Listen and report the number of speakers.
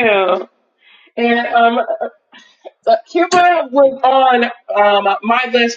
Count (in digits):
1